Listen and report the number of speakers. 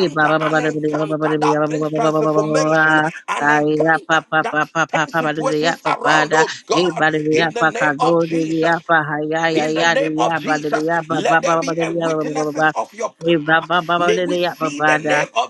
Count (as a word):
two